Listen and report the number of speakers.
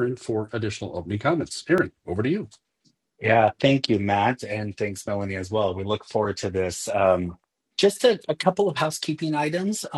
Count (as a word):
two